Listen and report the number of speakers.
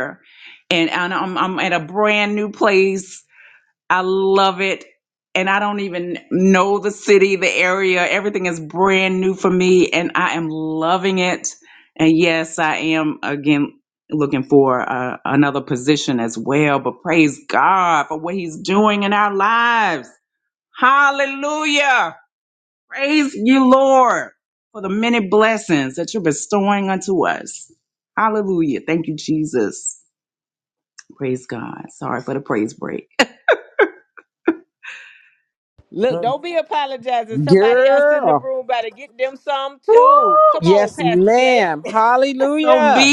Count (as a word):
three